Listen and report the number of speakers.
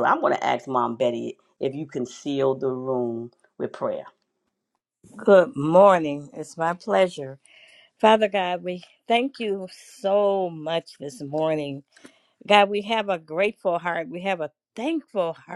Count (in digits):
2